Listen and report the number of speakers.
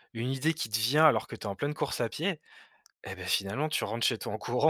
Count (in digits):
1